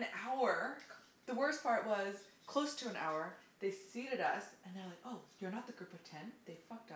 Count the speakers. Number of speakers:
1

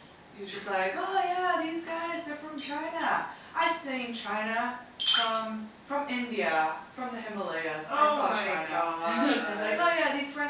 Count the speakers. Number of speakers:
2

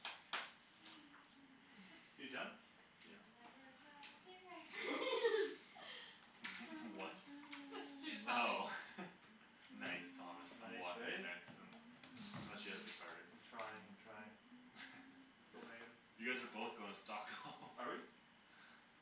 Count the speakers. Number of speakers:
4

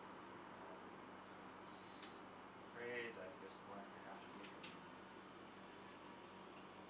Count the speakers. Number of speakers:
1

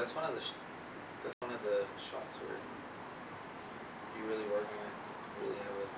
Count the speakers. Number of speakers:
1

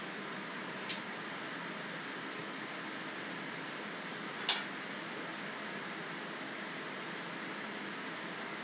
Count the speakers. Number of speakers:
0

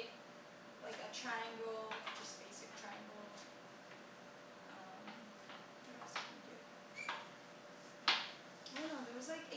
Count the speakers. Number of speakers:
1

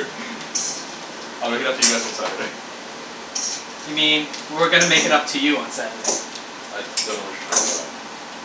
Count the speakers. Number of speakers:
2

